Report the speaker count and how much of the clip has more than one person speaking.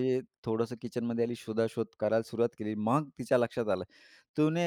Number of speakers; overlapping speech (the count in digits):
1, no overlap